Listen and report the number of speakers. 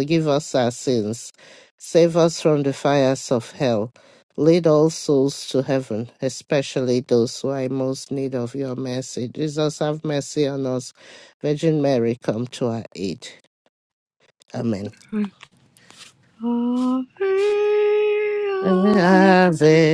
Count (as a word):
two